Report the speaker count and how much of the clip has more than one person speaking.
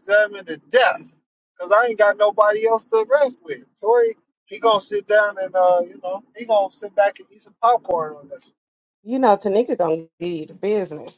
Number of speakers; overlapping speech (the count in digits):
2, no overlap